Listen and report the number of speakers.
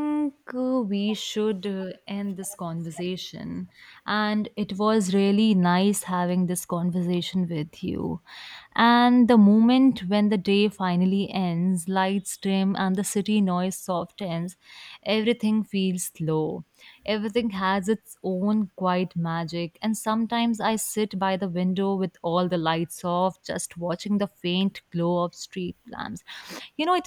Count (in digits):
1